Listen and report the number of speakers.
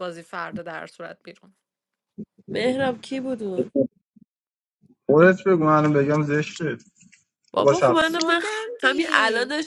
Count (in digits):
3